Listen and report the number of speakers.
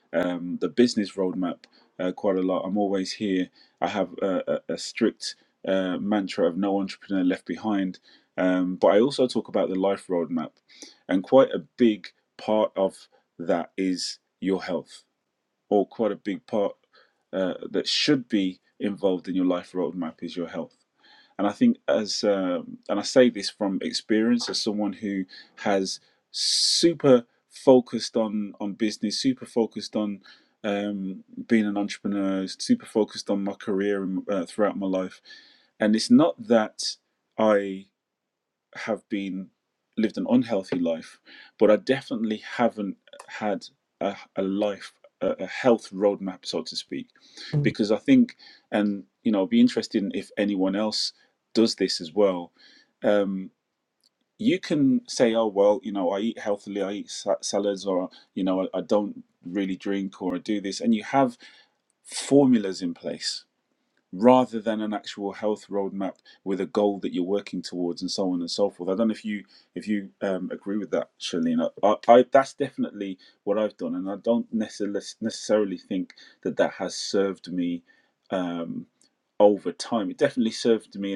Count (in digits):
1